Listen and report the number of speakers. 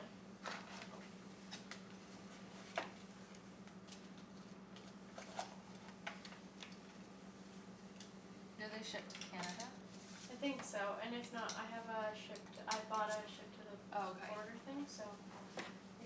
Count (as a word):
two